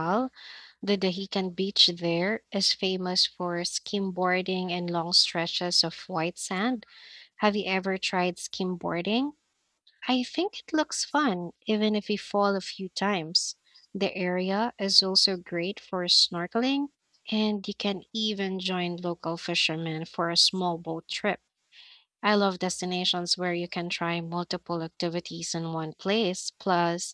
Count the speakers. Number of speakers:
one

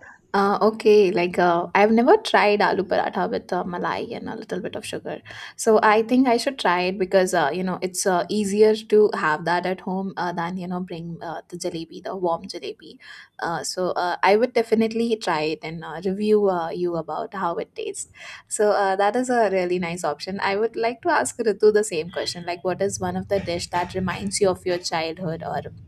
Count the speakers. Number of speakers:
one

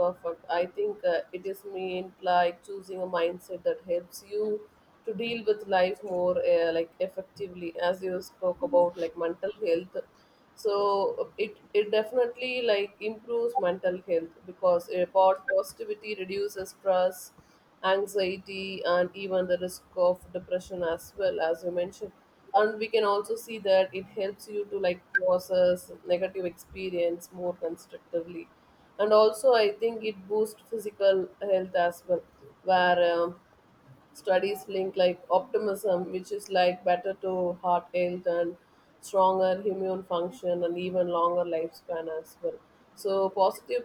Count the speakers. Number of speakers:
one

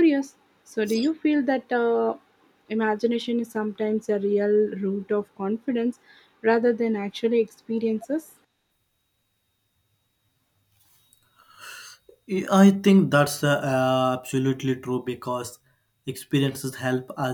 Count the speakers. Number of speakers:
two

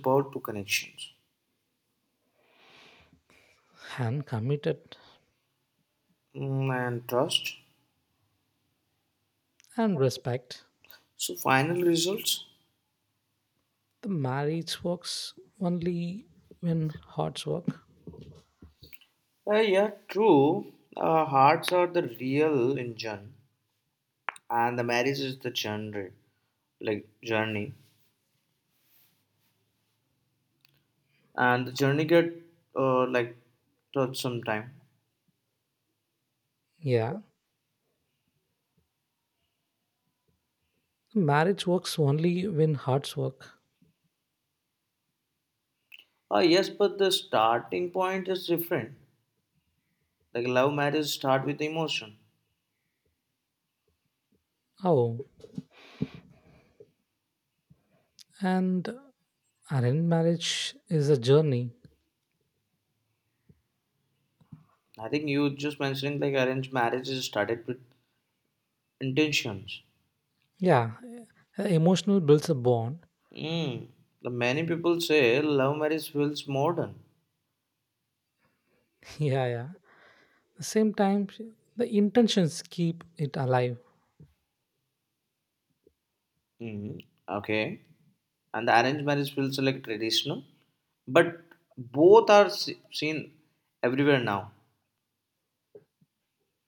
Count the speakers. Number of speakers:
two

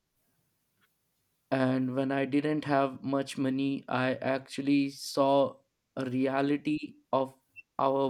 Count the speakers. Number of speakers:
one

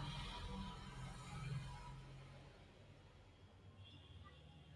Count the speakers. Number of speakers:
zero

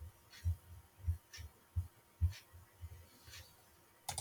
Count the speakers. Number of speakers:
zero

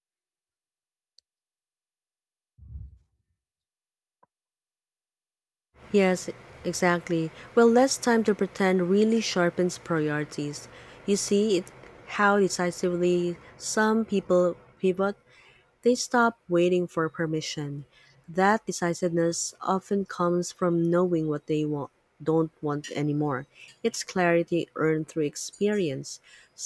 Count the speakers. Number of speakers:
one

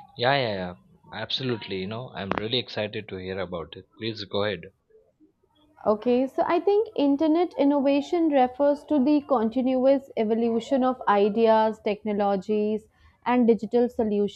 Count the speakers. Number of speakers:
two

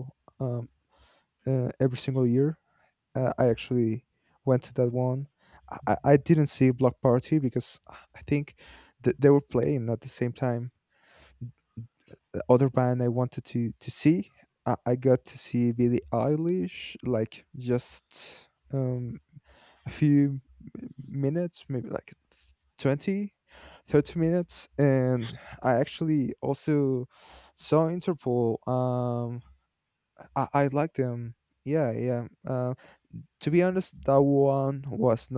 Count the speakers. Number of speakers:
one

